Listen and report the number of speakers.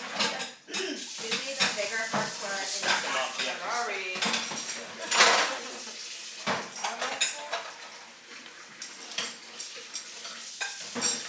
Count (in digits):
3